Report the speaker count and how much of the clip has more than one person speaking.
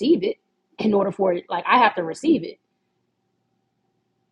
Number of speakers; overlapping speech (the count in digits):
1, no overlap